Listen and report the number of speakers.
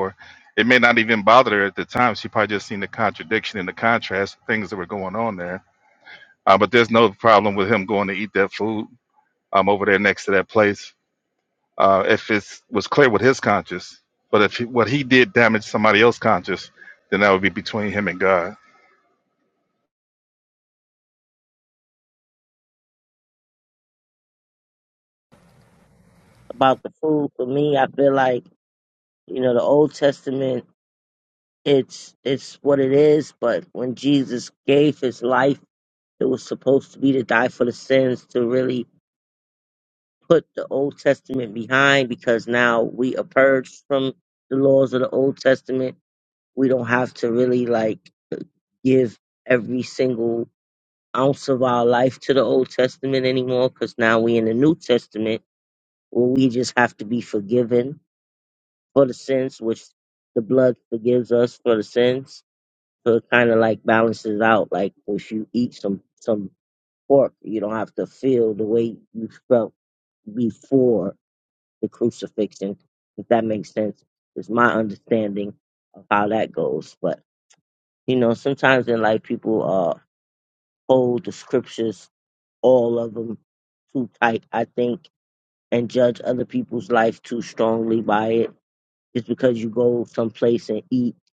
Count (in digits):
2